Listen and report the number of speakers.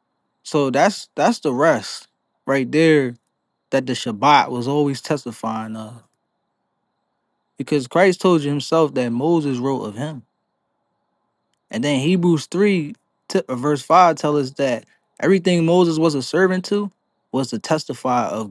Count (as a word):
one